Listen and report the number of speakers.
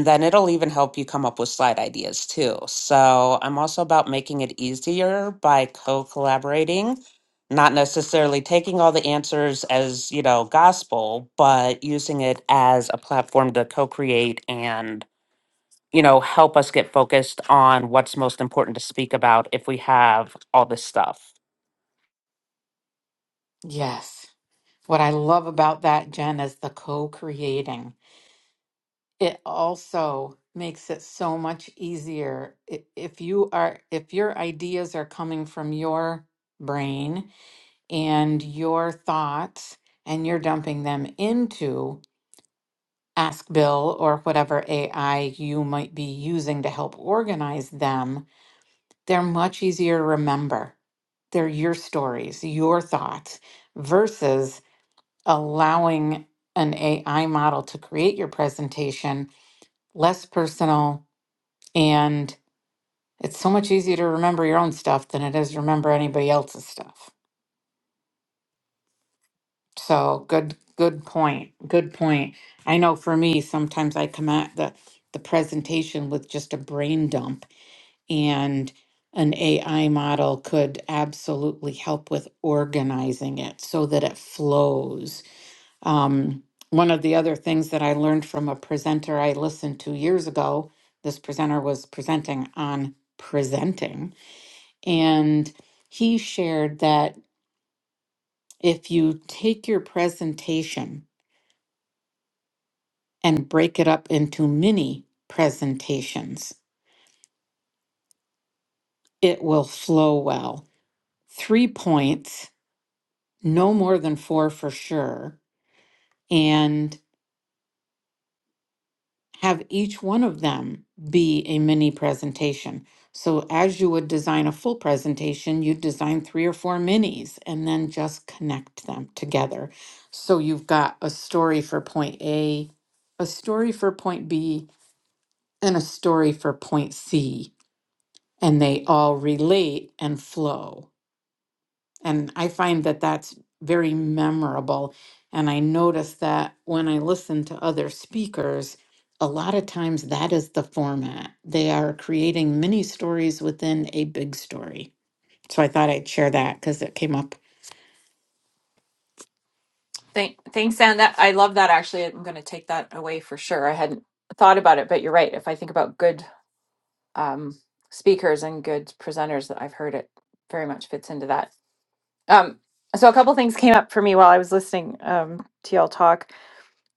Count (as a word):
three